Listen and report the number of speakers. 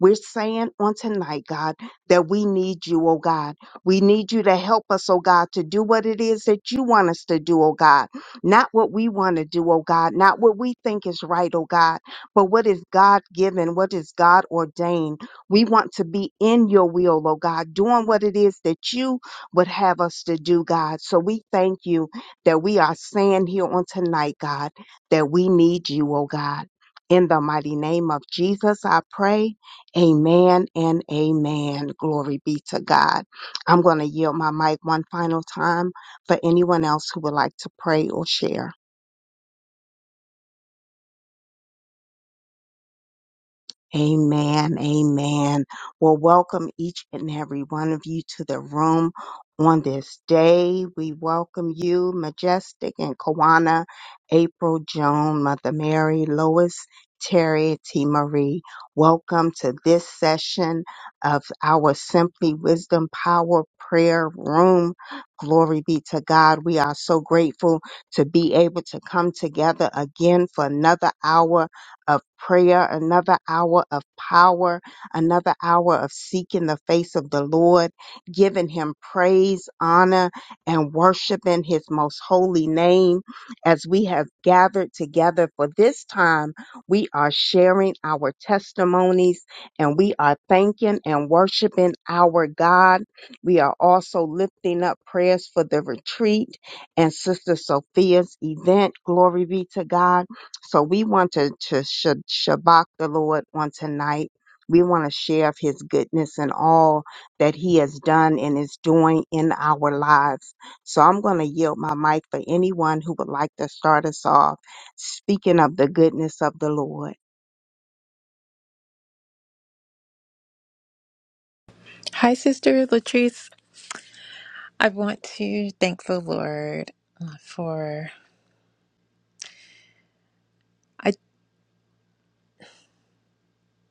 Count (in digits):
2